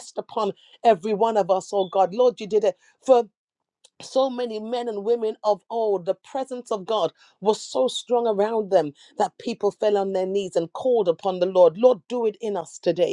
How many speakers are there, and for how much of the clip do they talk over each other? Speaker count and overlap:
1, no overlap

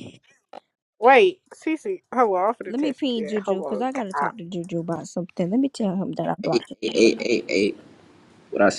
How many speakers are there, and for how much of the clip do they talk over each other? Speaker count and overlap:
3, about 22%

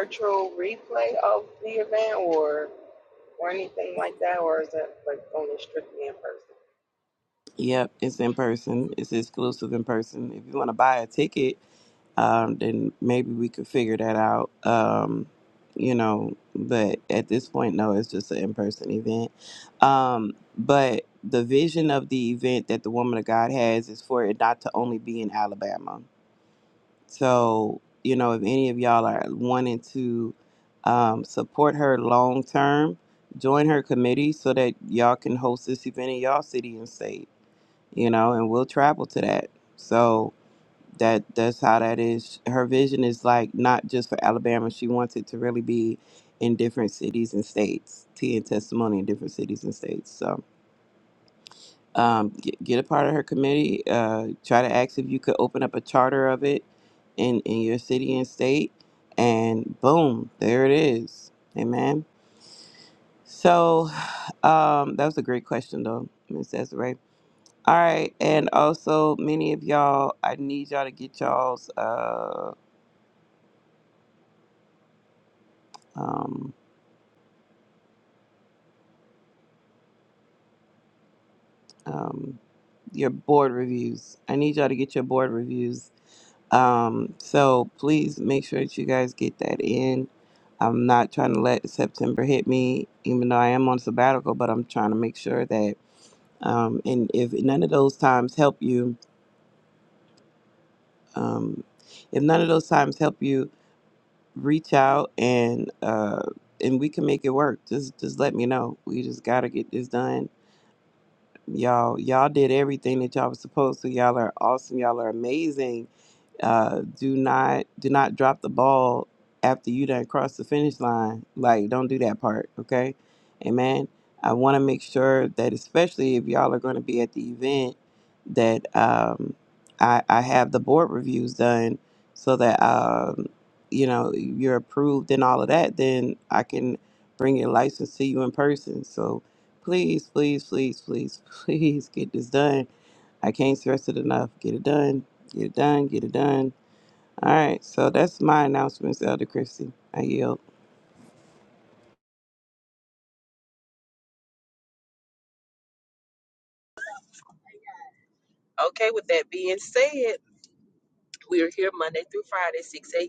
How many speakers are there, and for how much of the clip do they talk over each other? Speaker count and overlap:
3, no overlap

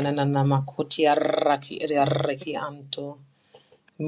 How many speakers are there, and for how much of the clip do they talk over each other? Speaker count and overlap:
1, no overlap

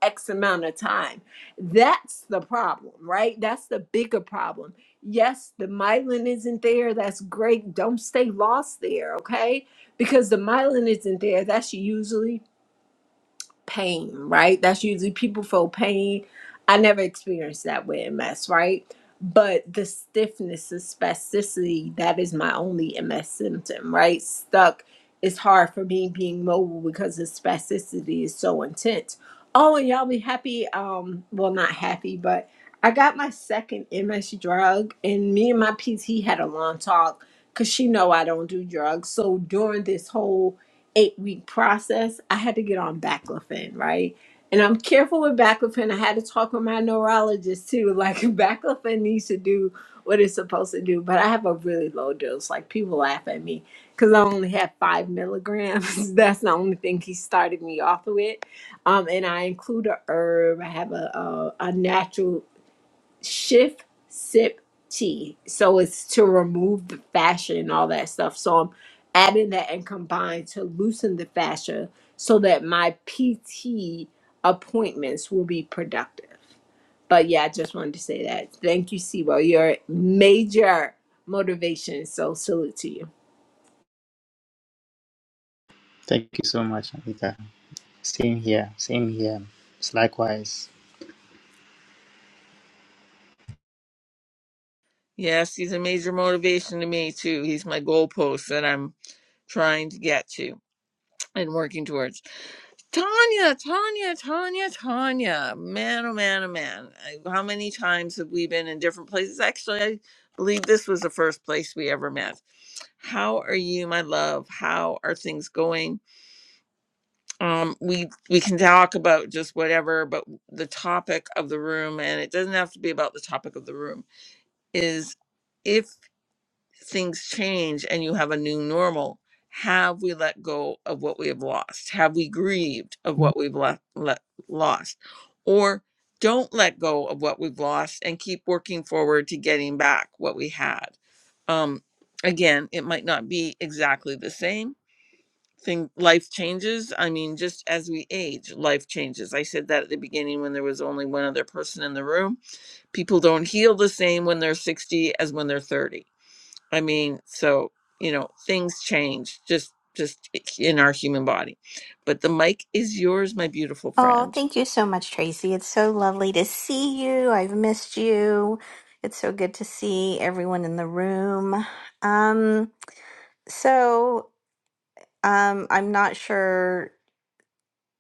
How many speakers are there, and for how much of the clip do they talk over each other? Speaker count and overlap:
4, under 1%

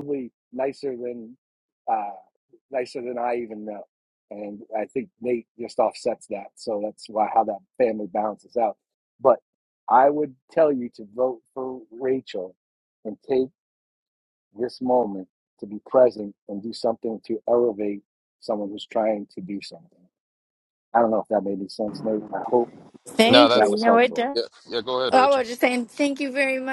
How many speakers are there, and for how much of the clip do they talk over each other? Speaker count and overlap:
3, about 5%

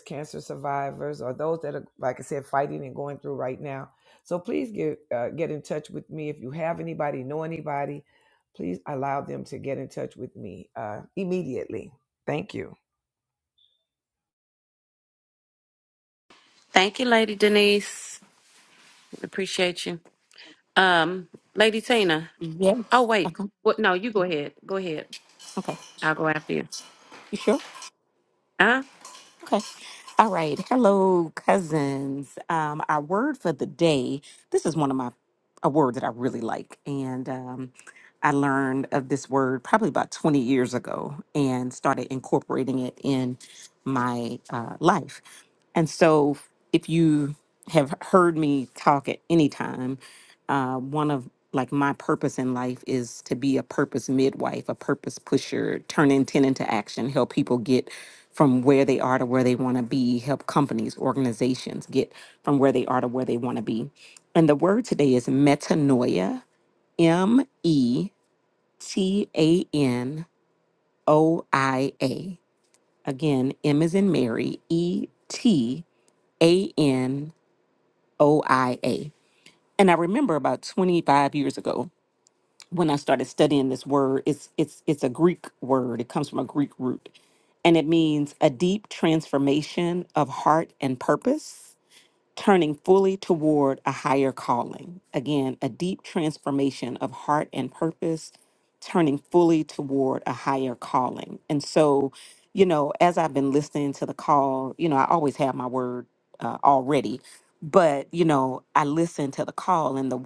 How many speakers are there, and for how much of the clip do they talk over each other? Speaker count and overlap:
3, under 1%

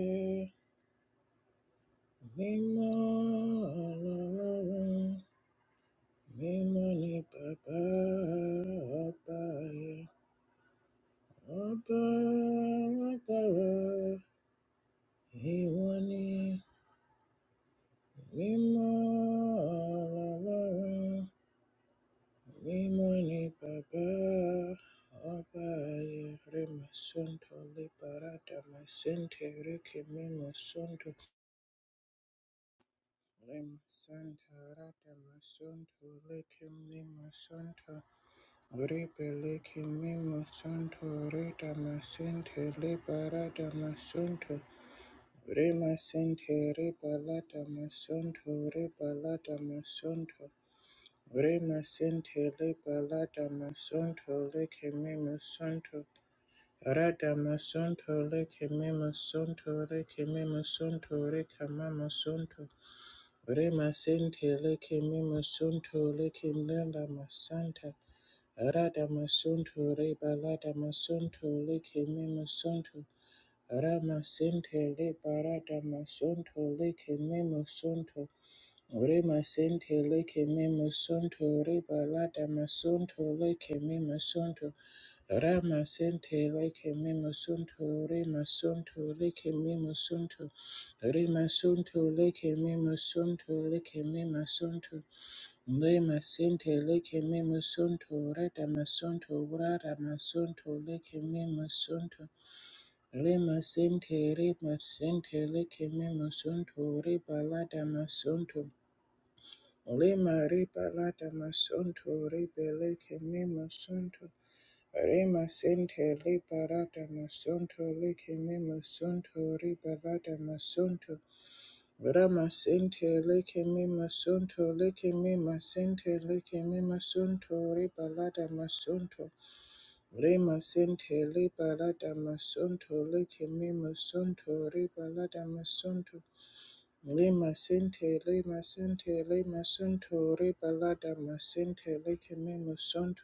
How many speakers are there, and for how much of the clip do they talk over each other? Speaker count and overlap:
1, no overlap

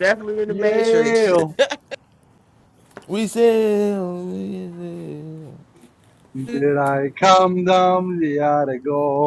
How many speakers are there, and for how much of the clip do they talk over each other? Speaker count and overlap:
3, about 9%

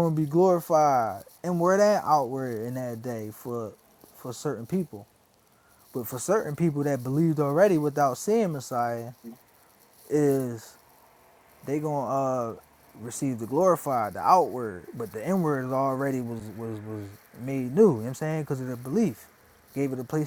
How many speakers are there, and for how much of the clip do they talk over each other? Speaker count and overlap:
1, no overlap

